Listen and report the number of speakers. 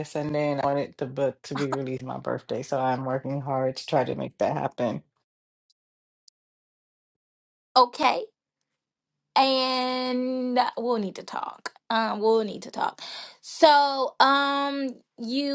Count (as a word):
two